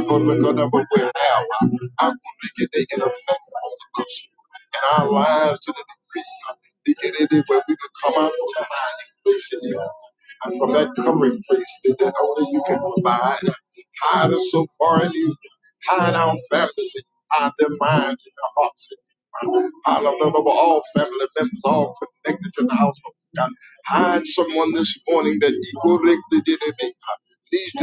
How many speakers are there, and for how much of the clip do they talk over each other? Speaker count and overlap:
1, no overlap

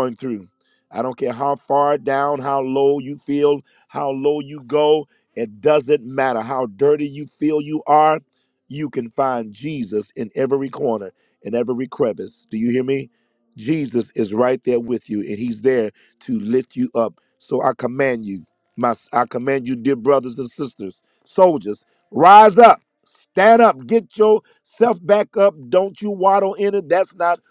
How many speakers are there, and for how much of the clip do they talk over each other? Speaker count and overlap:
1, no overlap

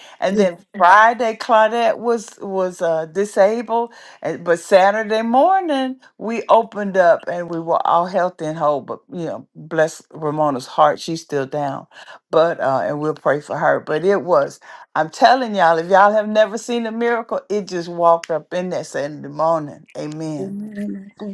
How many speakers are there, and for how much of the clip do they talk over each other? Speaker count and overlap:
2, about 1%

